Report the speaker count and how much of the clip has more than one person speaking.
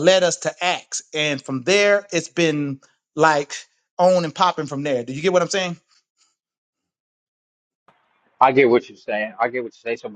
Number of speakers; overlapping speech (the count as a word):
two, no overlap